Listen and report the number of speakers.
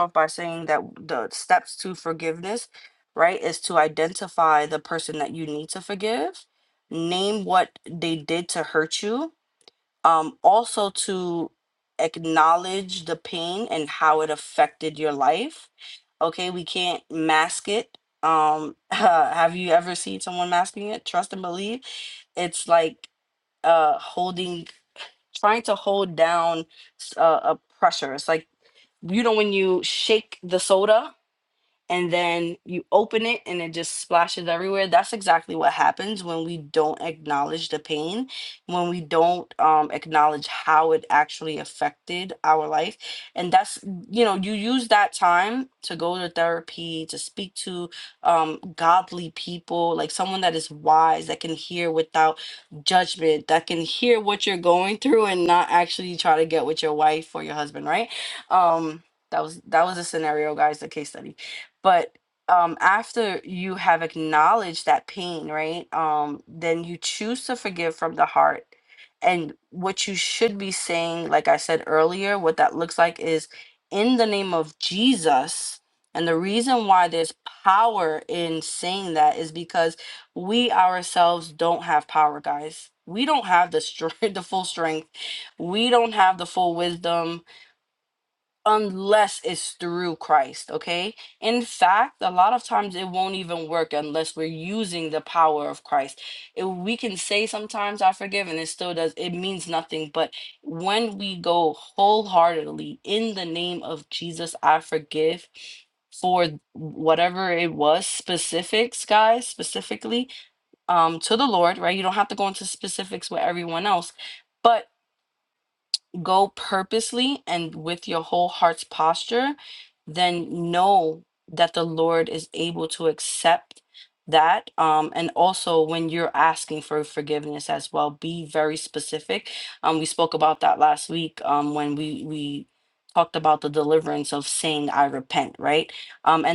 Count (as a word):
one